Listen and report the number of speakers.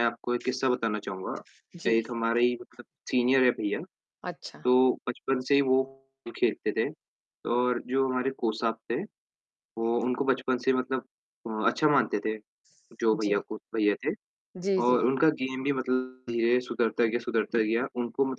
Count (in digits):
2